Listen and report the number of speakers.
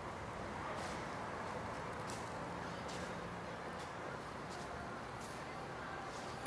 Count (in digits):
0